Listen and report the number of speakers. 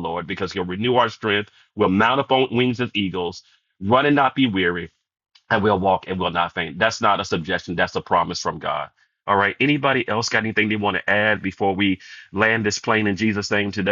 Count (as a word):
one